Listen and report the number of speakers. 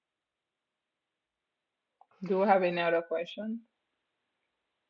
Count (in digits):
1